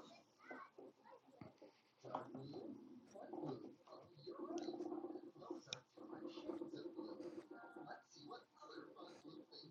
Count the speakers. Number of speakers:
0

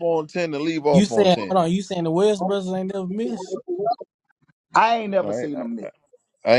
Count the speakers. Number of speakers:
3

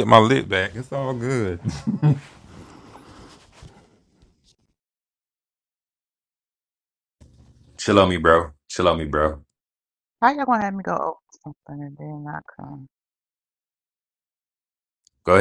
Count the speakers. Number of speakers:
3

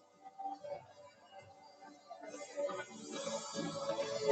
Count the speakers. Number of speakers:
0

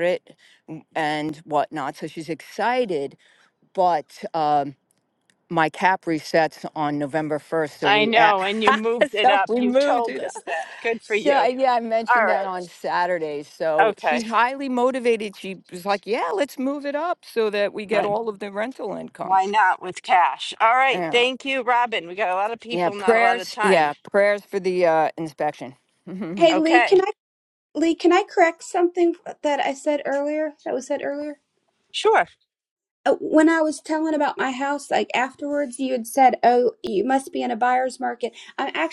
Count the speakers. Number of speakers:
3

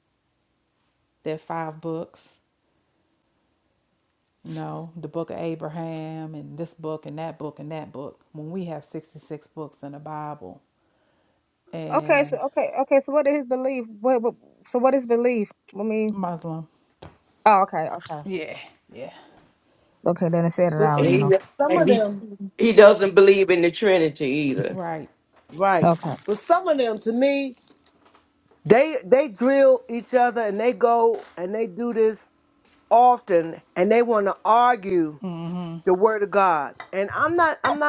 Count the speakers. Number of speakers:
4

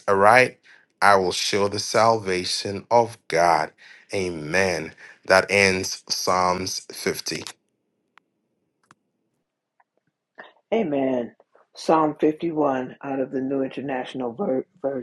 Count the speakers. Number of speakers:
2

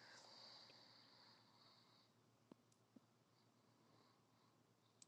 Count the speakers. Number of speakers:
0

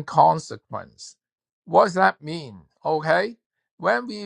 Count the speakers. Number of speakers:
1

